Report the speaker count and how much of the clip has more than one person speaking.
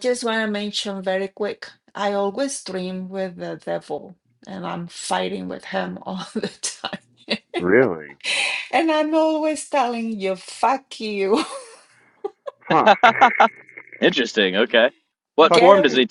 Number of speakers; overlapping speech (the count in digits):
3, about 4%